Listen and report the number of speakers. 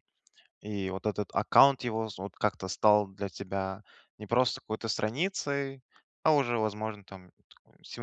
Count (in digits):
1